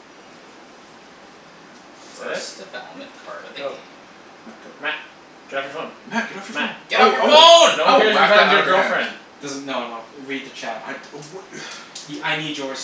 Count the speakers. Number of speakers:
four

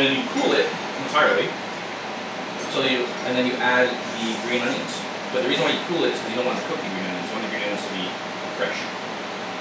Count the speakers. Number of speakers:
one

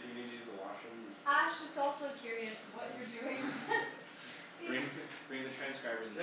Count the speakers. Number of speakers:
three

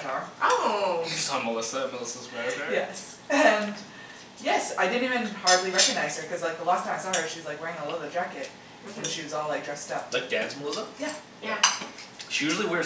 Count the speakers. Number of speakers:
four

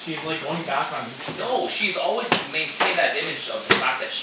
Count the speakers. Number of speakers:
two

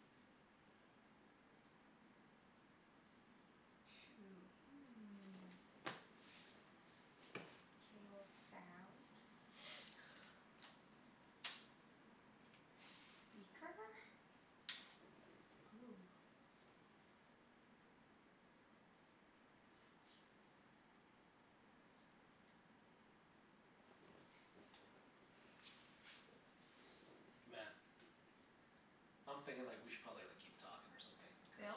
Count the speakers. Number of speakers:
two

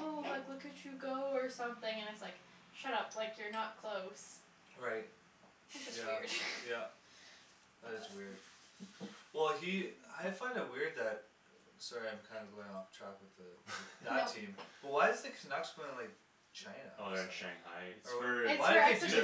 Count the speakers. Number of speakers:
three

